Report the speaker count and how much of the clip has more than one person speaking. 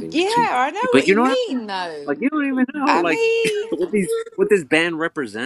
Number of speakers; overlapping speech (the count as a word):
two, about 40%